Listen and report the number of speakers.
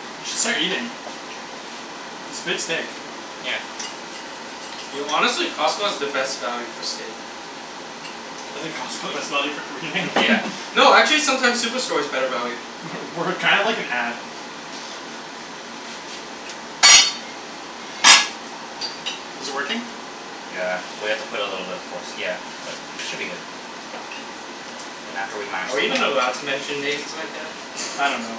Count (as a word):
three